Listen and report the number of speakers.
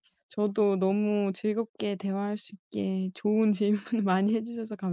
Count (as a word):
one